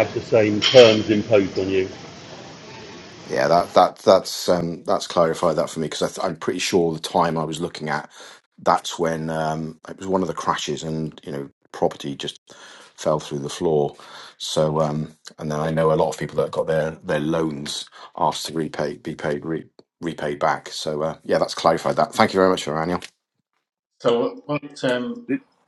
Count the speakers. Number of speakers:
3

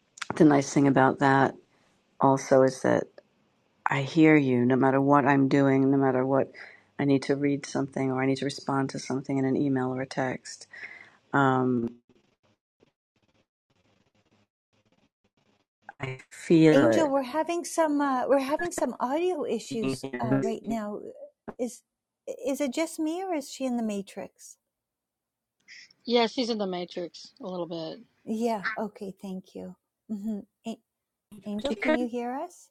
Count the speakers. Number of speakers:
3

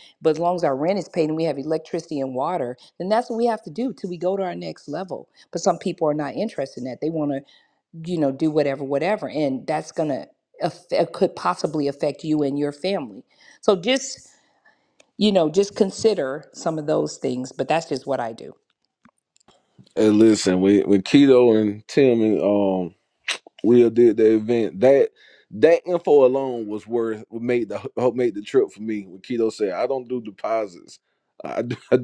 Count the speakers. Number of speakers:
2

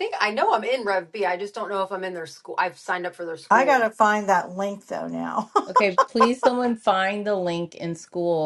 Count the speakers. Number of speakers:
3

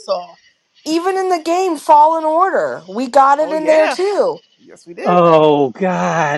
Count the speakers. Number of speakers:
3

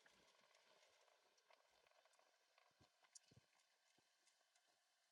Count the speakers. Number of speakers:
0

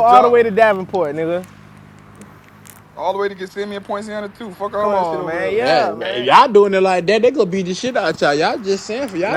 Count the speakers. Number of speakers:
3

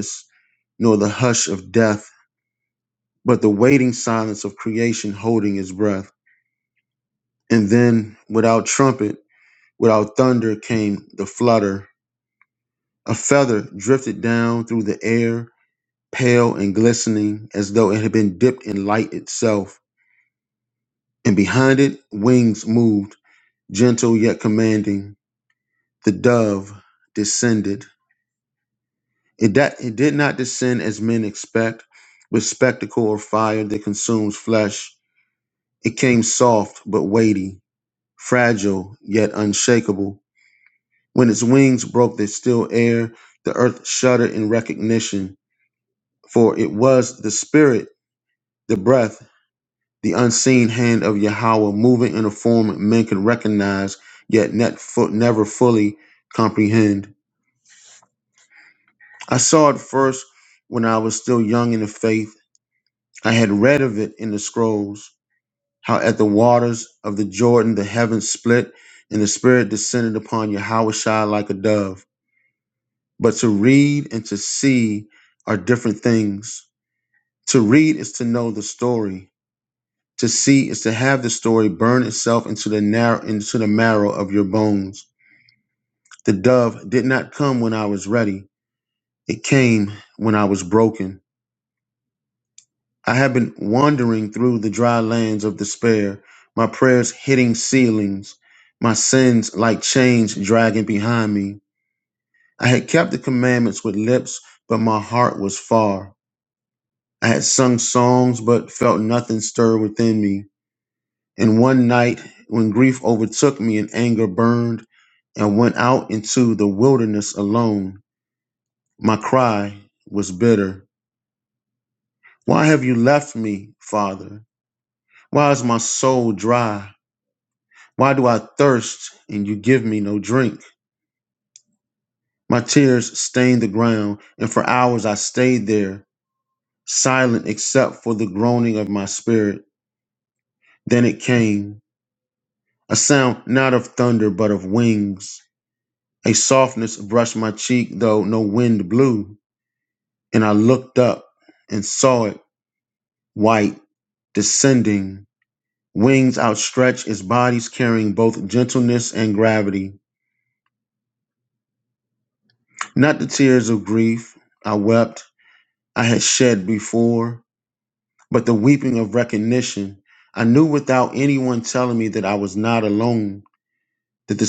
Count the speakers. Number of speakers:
1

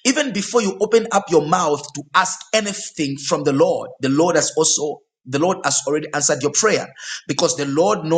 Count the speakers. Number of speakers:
1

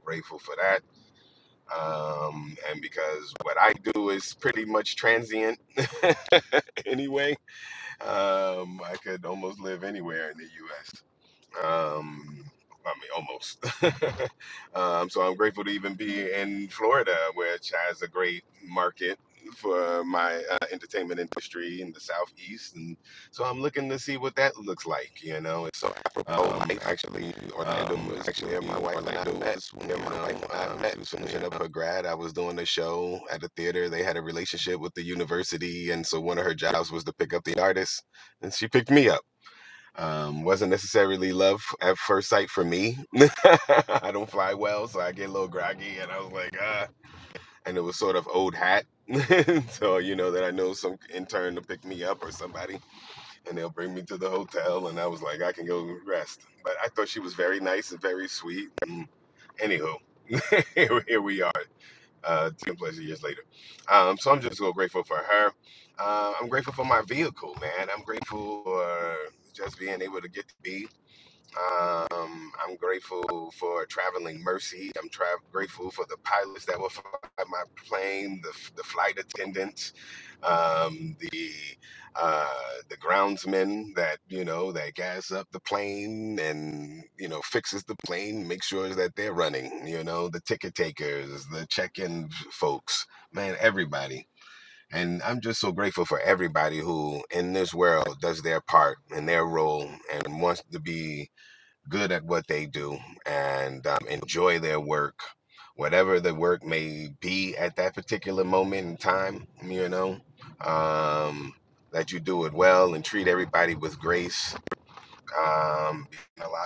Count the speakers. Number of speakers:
1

